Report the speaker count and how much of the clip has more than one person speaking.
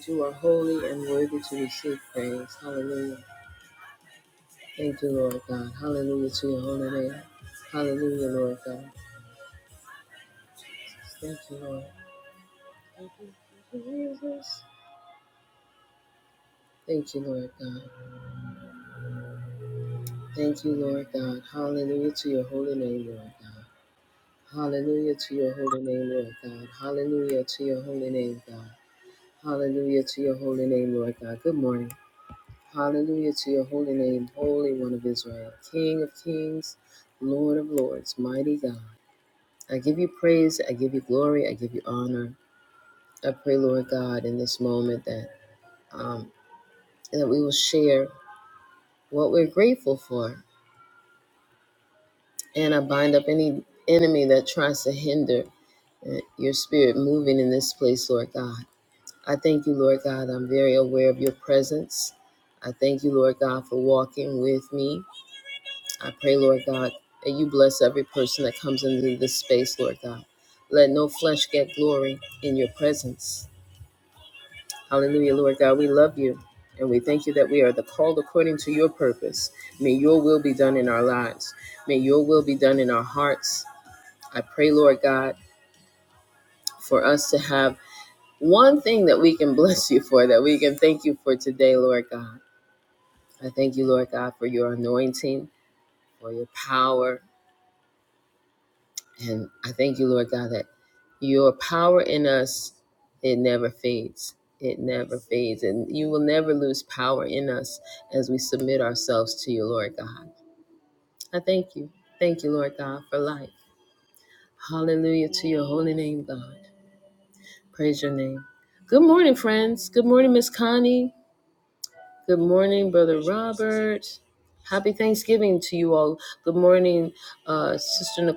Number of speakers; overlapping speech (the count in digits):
1, no overlap